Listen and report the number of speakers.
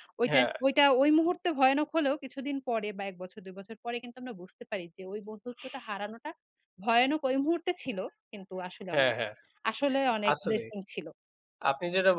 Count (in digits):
2